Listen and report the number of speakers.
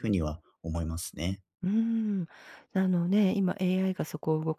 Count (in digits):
2